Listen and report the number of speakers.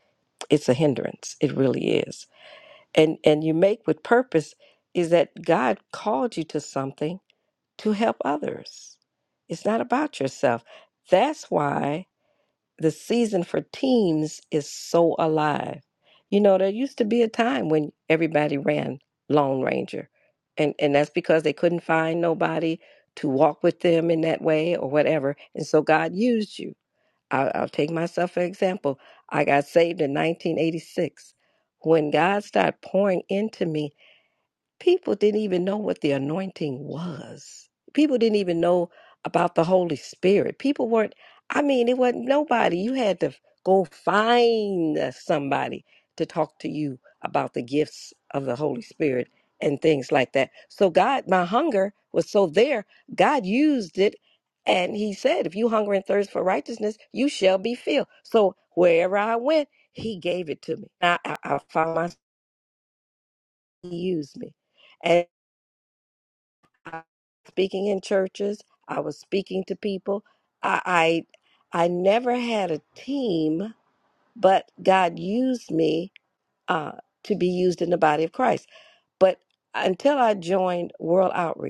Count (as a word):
one